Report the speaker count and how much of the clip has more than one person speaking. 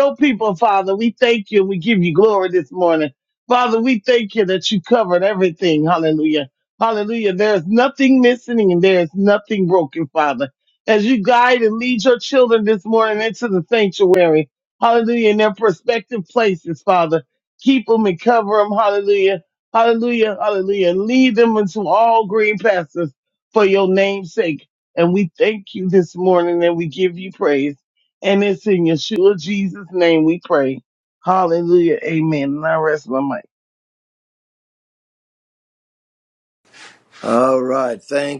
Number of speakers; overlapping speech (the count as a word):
two, no overlap